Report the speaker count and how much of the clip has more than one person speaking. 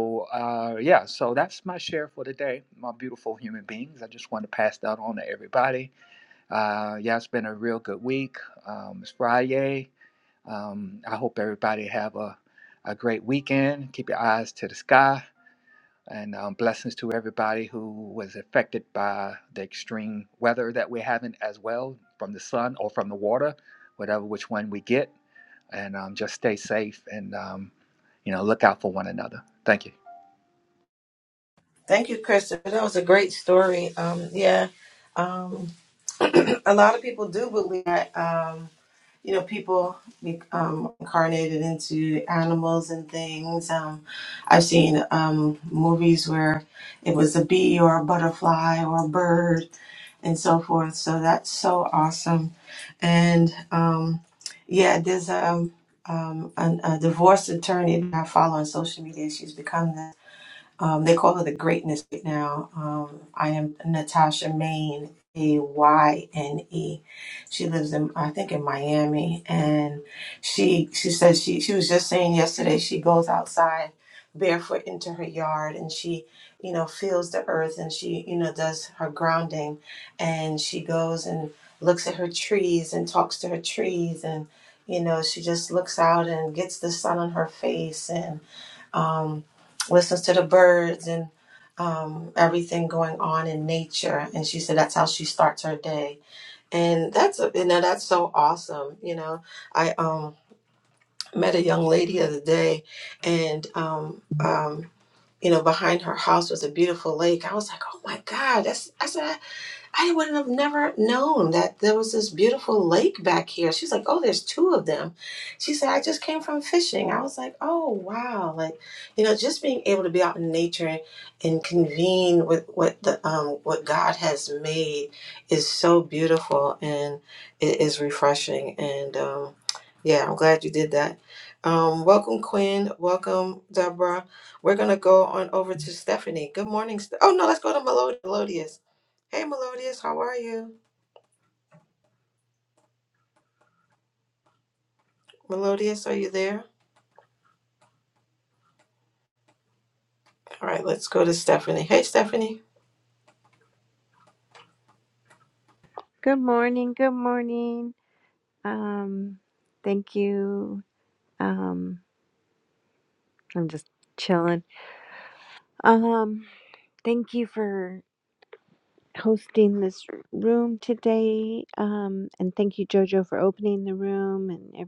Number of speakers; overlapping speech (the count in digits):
3, no overlap